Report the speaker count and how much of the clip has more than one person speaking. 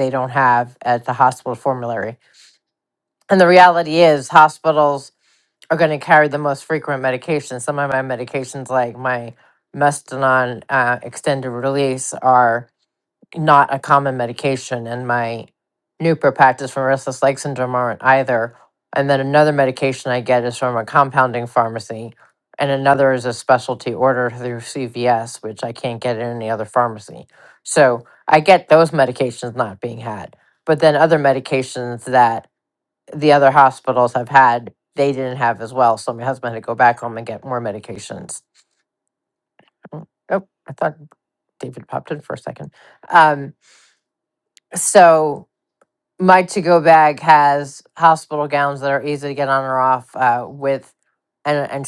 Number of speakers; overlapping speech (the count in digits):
1, no overlap